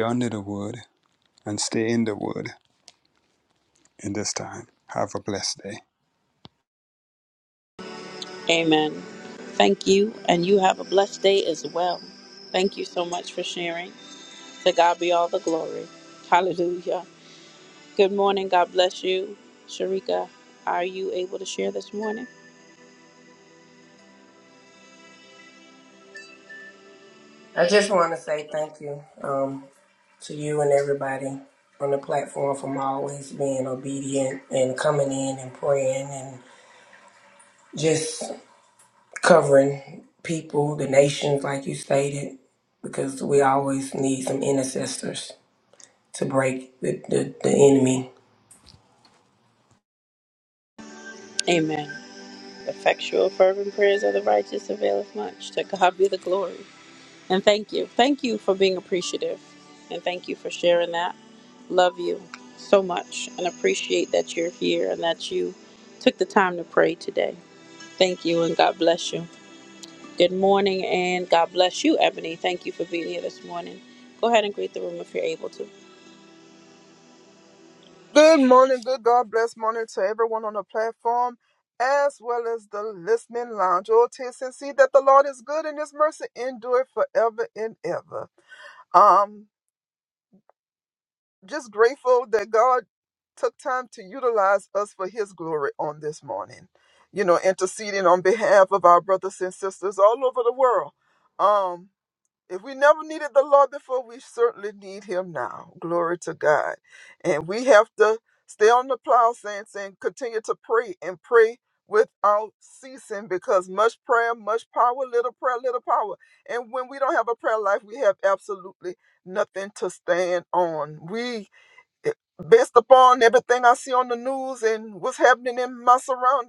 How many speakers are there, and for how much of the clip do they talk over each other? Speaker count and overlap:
4, no overlap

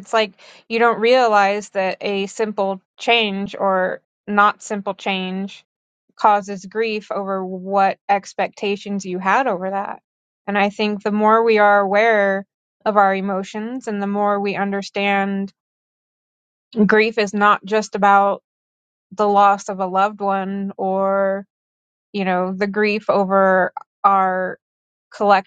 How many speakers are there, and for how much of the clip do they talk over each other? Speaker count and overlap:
1, no overlap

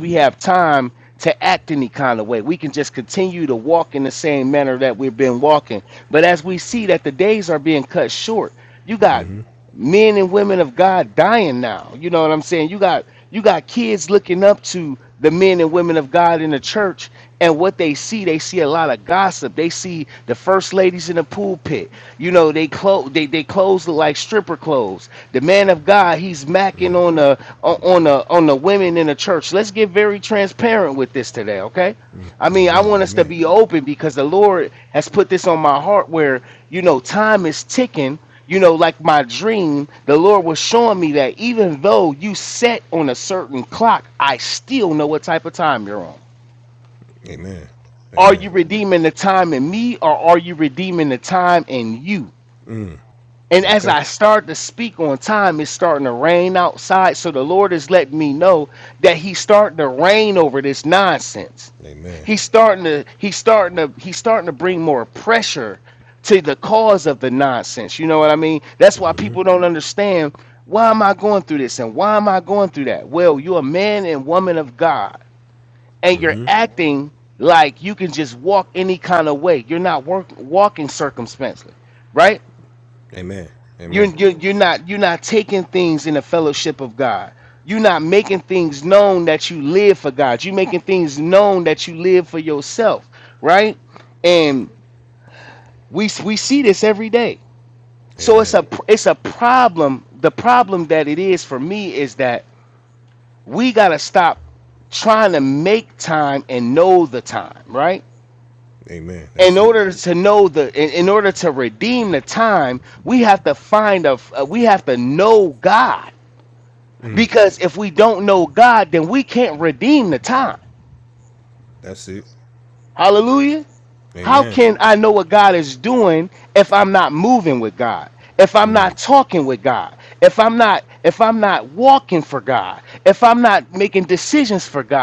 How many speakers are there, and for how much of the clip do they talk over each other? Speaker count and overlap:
2, about 2%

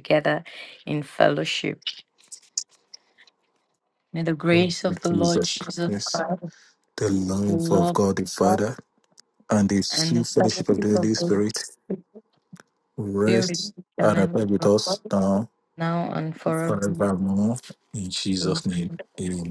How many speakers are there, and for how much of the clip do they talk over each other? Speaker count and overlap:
2, about 22%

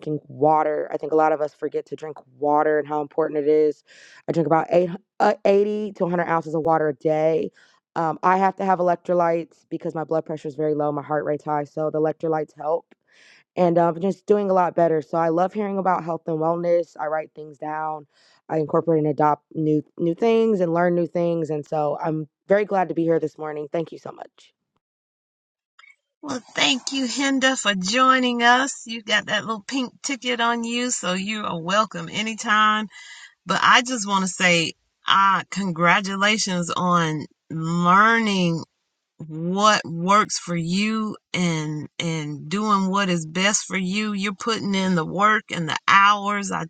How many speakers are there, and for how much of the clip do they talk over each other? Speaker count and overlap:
2, no overlap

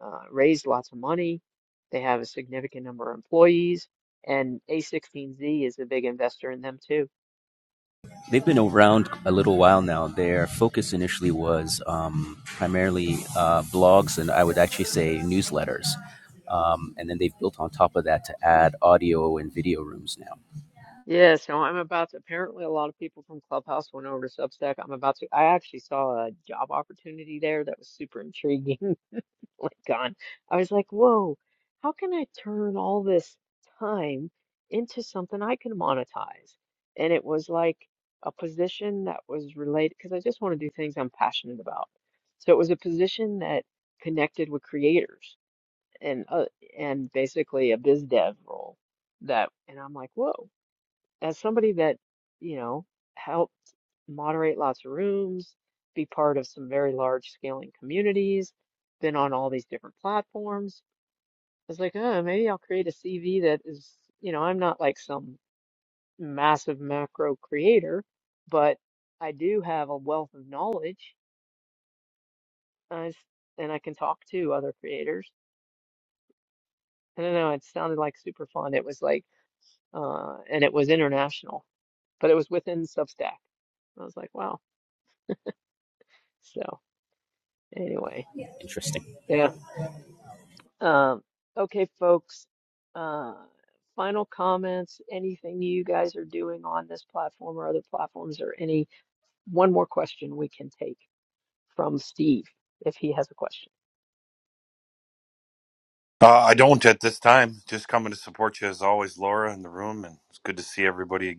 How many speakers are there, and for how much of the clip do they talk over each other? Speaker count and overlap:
3, no overlap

